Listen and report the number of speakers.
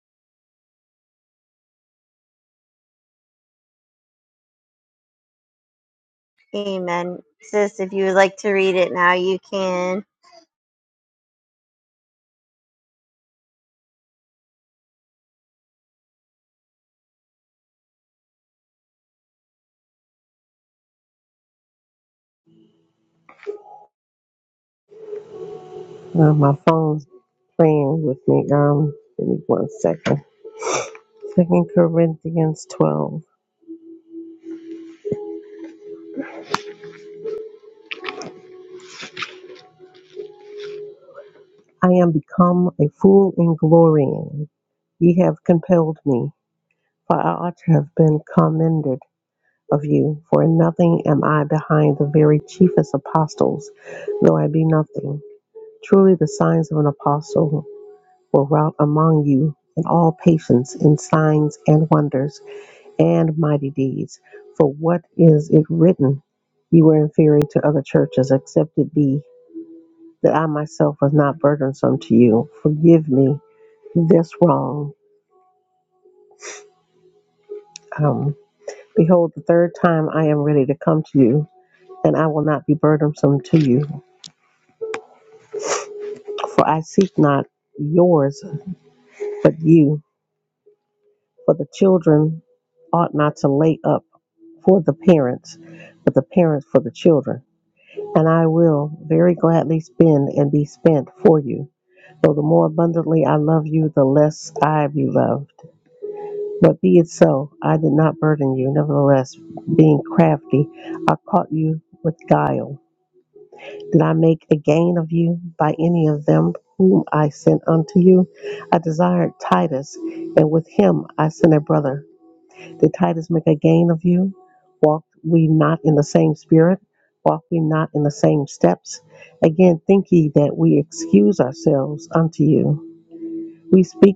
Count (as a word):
two